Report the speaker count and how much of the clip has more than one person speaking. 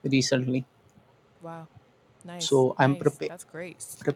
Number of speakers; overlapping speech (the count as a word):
two, about 22%